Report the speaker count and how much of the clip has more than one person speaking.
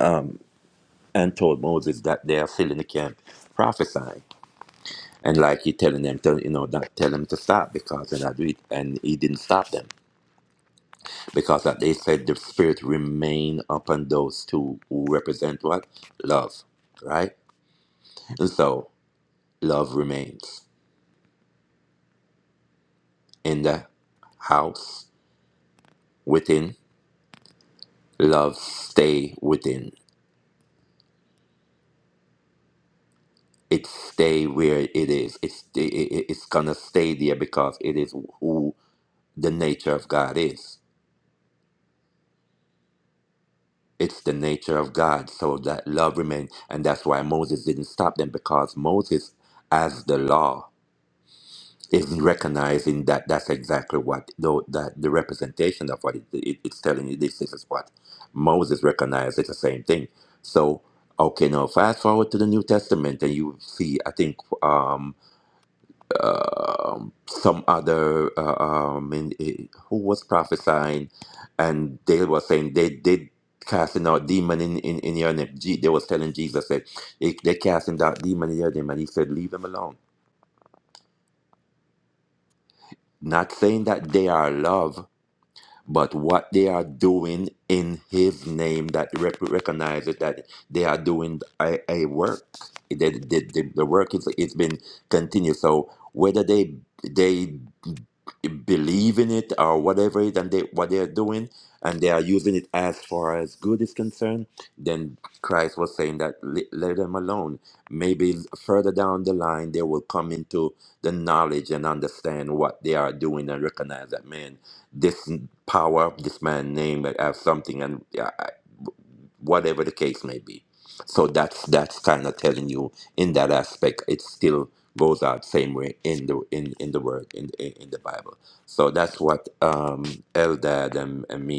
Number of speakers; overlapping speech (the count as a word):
one, no overlap